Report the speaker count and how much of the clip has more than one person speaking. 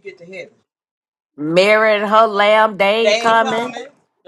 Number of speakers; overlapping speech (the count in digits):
2, about 16%